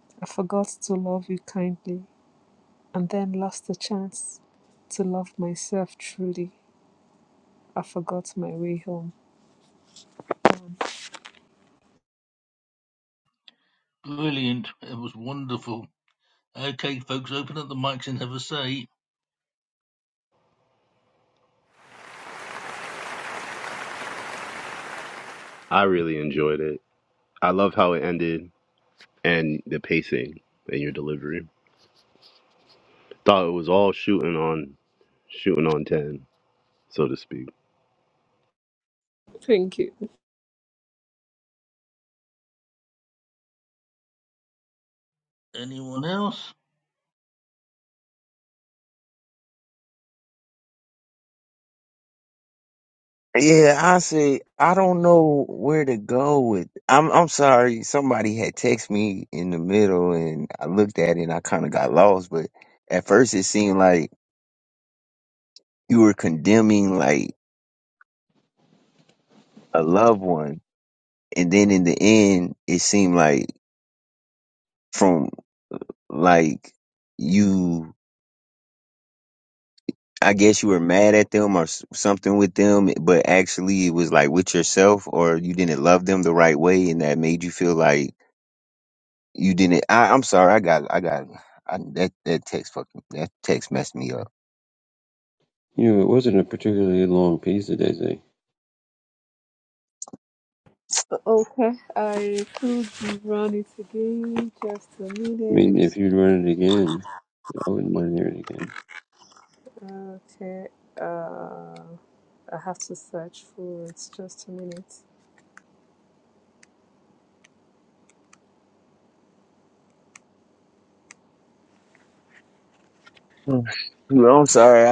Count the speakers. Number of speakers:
five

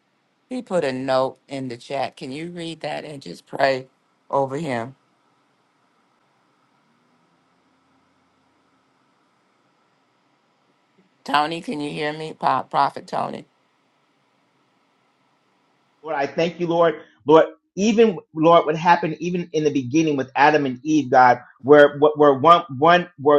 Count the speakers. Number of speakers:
two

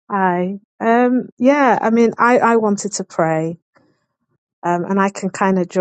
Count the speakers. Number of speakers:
one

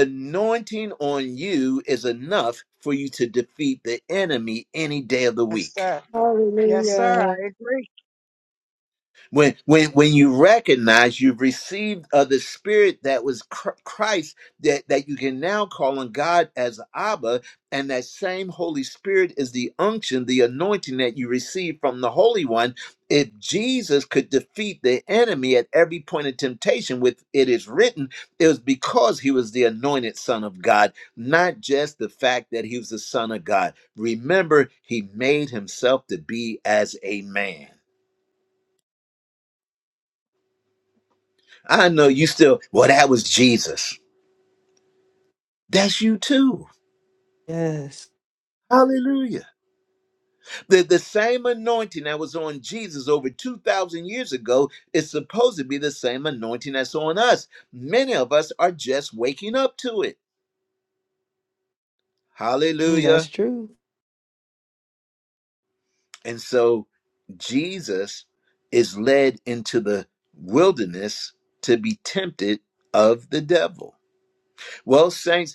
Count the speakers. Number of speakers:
three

